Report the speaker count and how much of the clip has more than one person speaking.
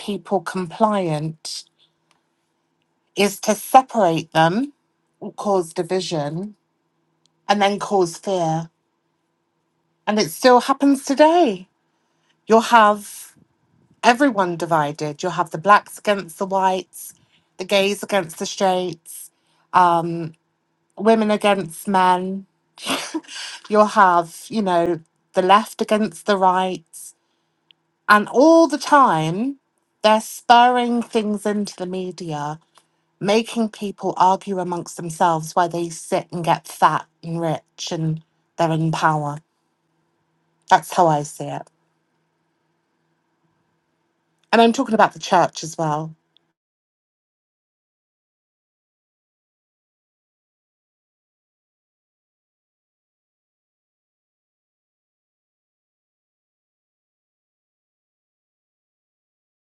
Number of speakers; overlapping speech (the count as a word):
one, no overlap